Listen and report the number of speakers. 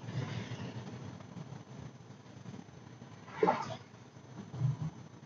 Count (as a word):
zero